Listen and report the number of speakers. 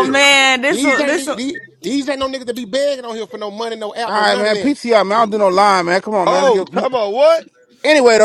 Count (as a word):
four